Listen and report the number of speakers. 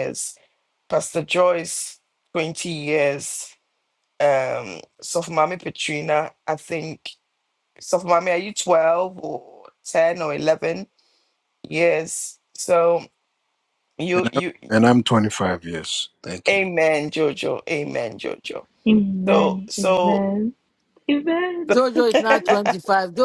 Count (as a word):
four